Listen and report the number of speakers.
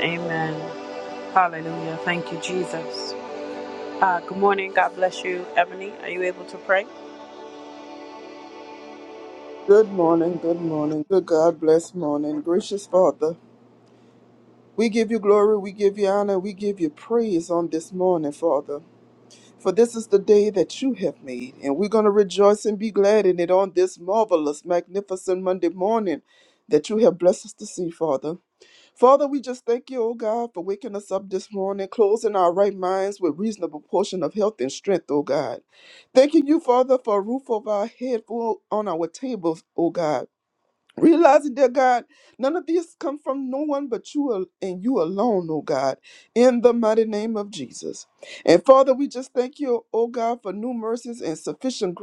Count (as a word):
two